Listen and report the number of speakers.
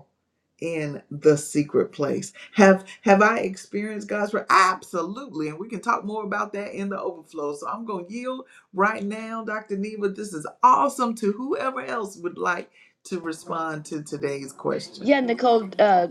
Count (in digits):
2